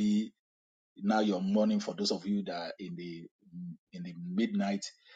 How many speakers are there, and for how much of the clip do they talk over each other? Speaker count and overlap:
one, no overlap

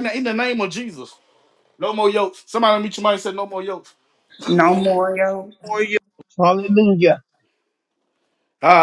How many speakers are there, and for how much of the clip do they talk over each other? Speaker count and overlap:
three, no overlap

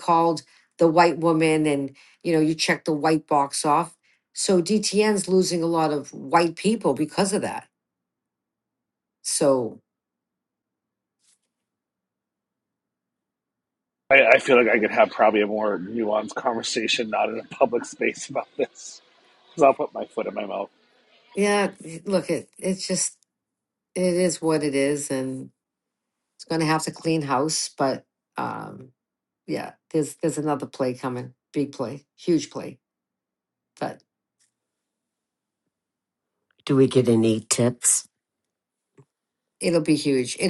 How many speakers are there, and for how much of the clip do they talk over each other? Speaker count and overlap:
three, no overlap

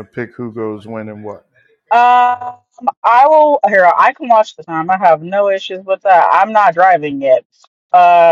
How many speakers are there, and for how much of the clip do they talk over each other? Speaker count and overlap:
two, no overlap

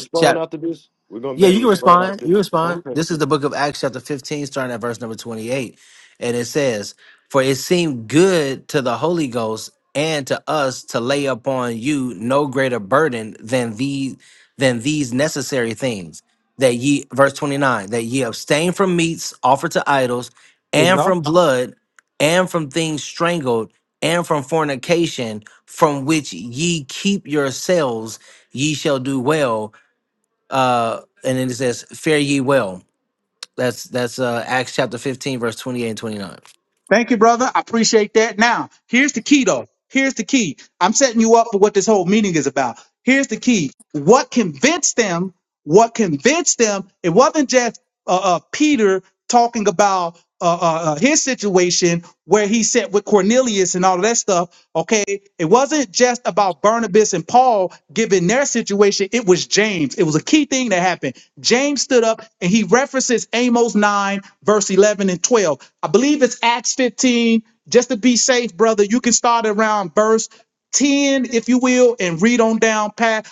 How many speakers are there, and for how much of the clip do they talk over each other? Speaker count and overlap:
three, about 3%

